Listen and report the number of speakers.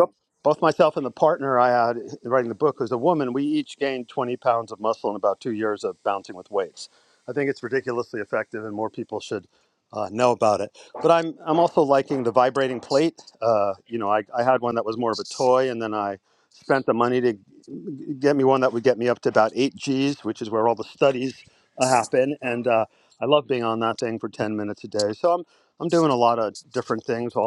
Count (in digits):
1